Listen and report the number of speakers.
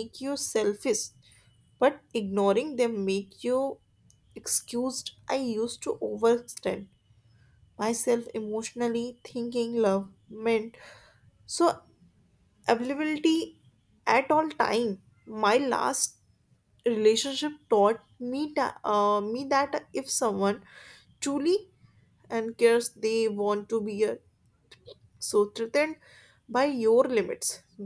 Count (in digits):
1